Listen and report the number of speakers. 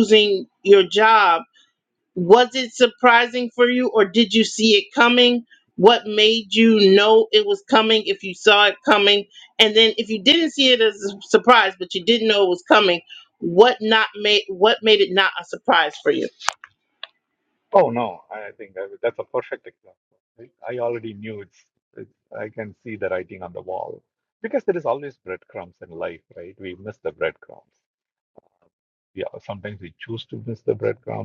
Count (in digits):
2